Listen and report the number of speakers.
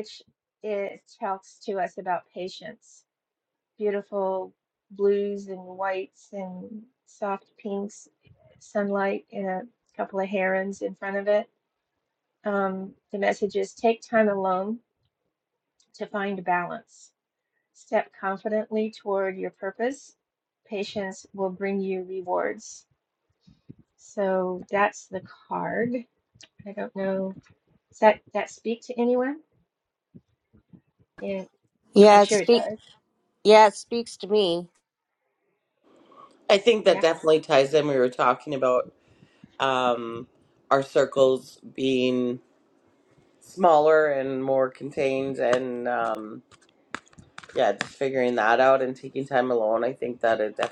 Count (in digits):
3